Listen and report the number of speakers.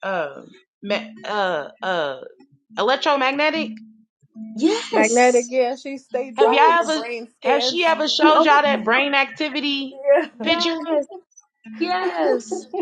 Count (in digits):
3